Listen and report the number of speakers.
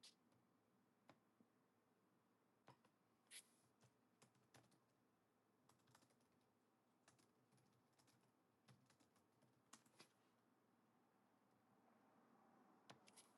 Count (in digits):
0